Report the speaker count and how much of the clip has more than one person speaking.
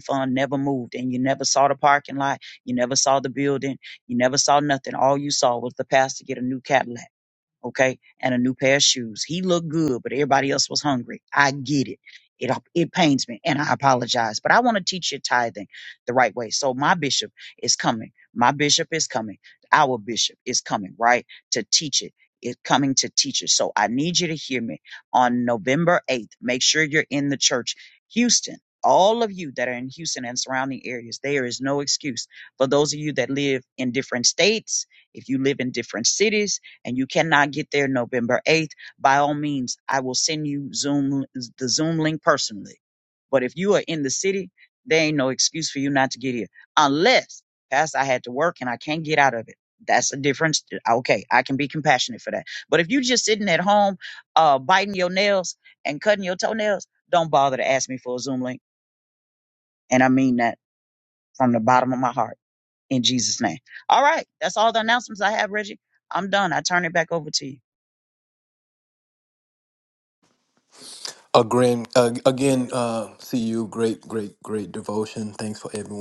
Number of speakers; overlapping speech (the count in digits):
2, no overlap